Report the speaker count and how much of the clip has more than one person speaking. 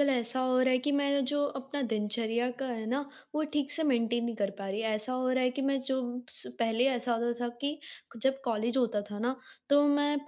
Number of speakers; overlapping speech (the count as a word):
one, no overlap